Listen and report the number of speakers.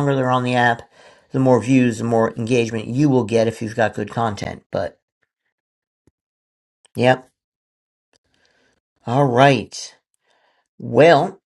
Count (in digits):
1